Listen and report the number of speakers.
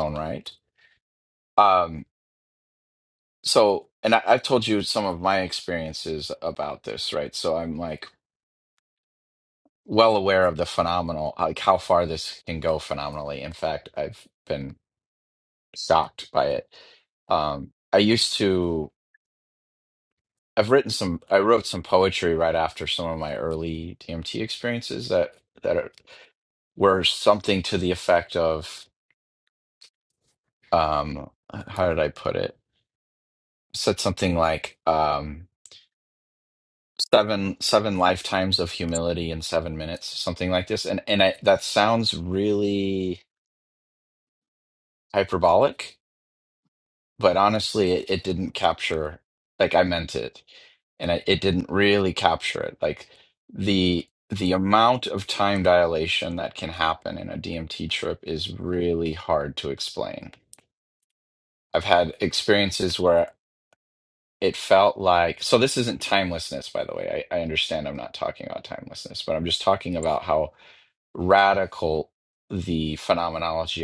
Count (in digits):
1